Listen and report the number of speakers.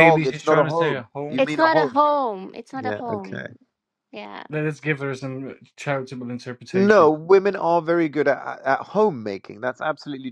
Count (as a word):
three